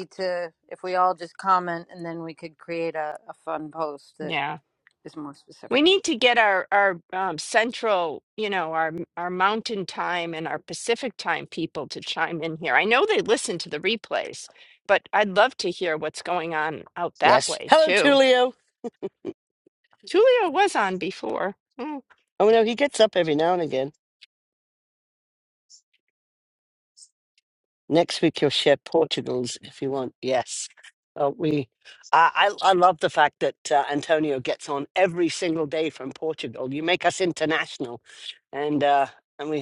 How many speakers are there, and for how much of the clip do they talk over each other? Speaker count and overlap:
3, about 3%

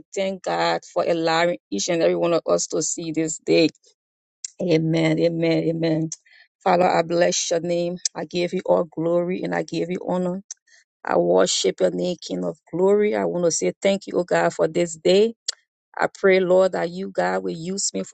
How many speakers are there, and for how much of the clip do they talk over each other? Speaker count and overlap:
1, no overlap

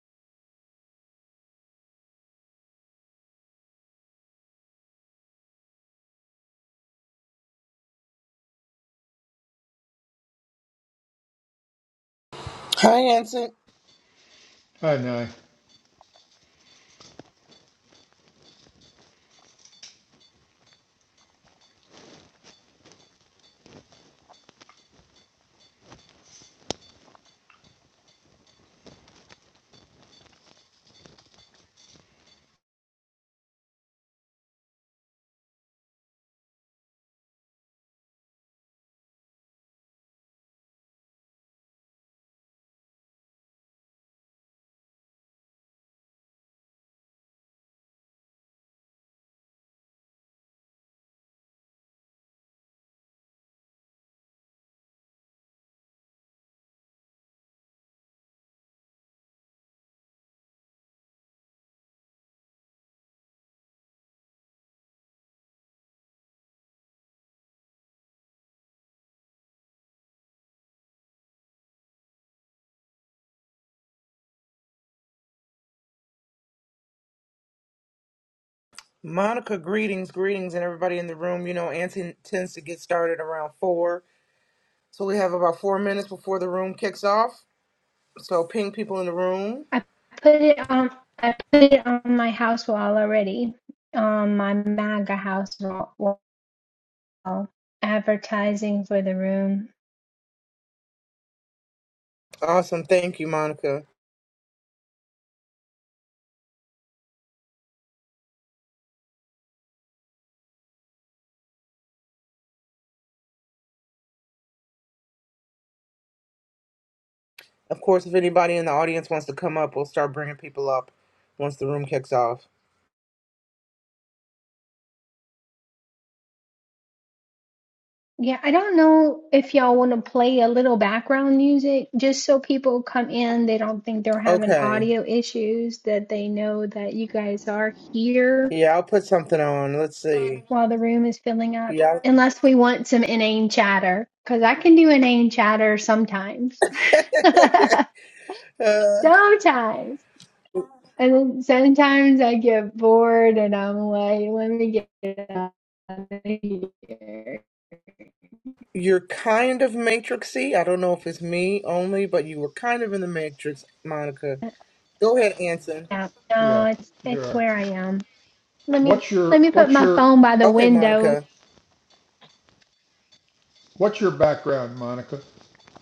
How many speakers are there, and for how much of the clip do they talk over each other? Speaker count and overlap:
3, about 2%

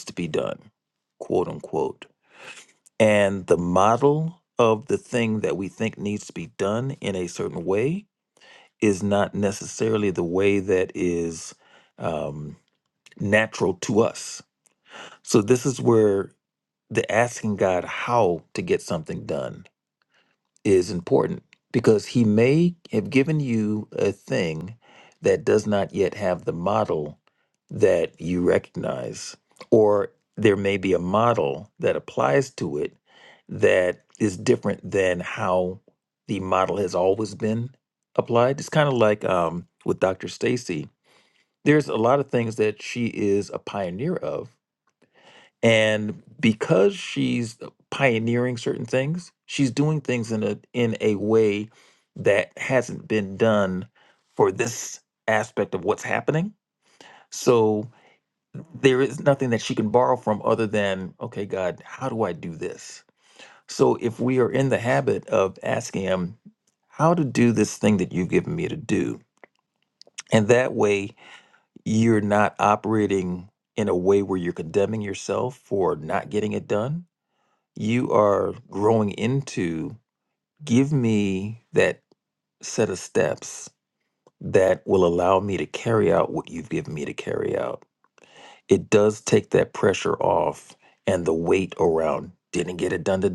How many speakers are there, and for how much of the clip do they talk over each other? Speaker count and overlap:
1, no overlap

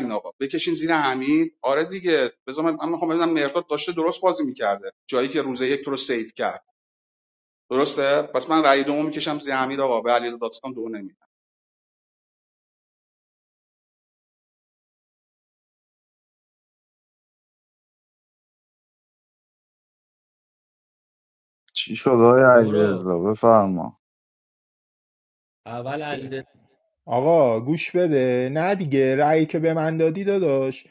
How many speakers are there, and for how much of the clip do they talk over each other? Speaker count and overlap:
4, about 2%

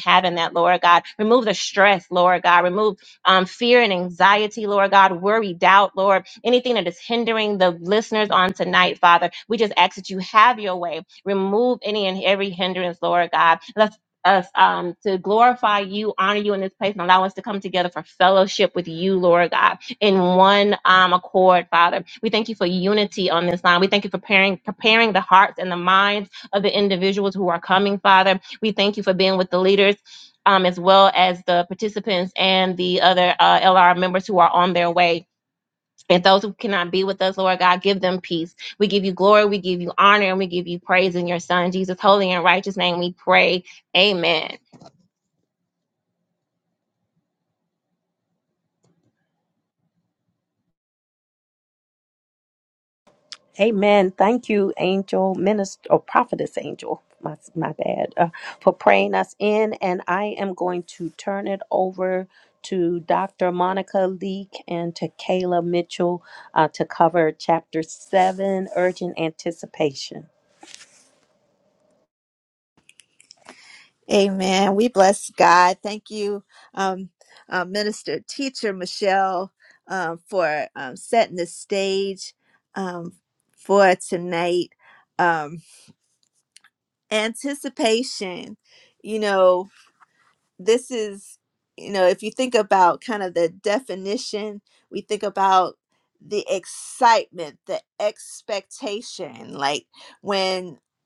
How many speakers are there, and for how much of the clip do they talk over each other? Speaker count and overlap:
3, no overlap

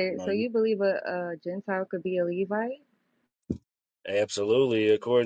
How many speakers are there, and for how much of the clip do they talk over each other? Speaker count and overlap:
2, about 6%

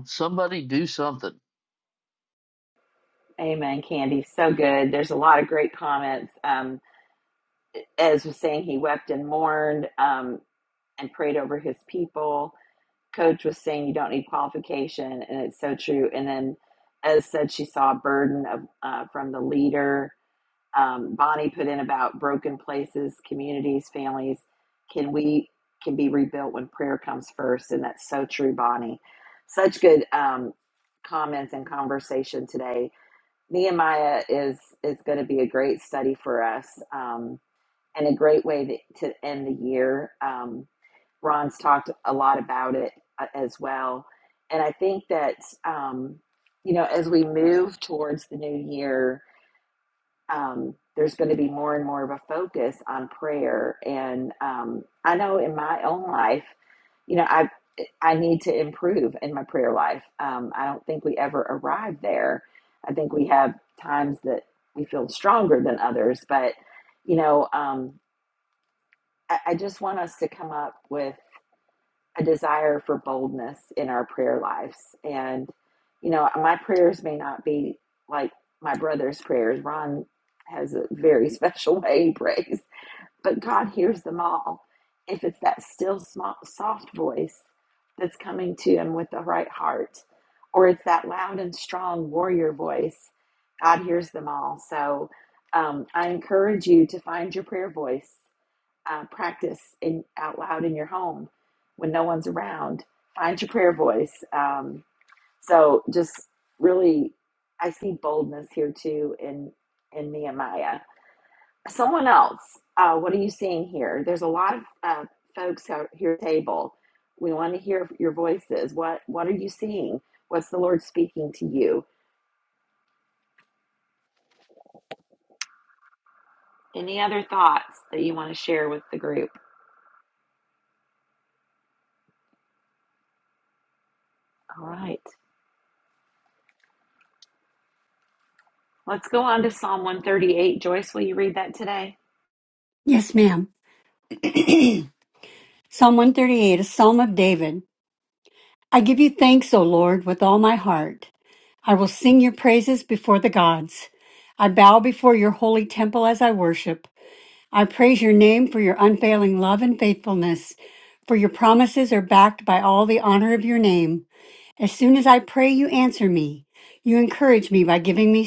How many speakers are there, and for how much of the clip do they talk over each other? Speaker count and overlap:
3, no overlap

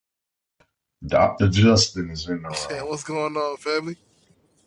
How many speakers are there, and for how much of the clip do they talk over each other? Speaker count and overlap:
2, about 5%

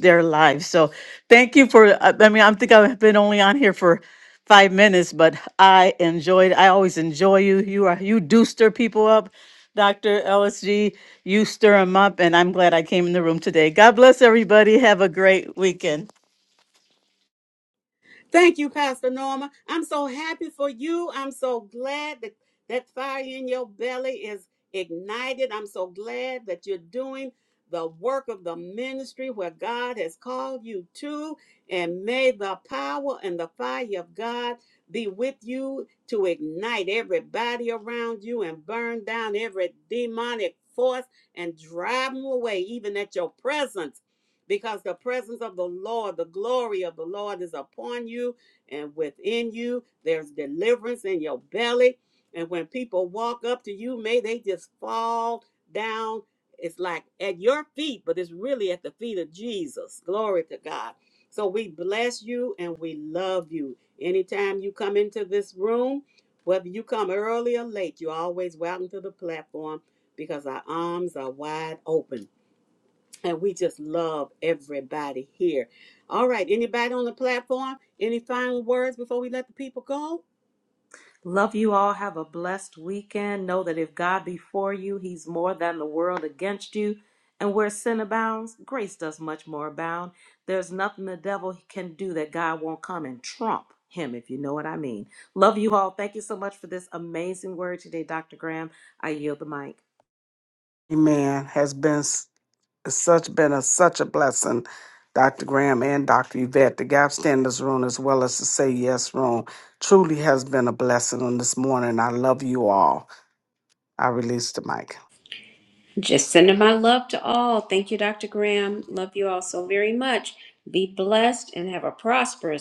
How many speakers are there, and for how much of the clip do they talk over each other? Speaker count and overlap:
5, no overlap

